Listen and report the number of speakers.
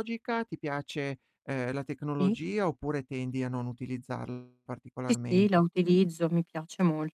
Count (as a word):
two